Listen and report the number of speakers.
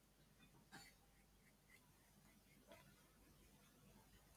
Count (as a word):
zero